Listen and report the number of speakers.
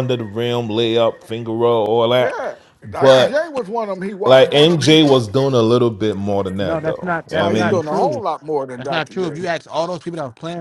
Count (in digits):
3